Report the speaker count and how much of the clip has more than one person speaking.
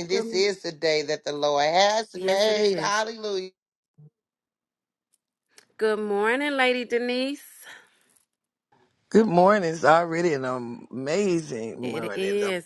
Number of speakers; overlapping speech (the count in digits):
3, about 13%